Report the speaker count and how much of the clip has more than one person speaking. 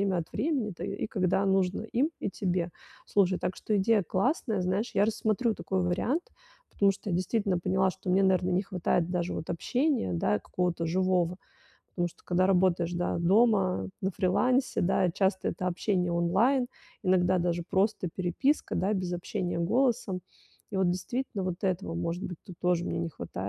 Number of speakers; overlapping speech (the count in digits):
1, no overlap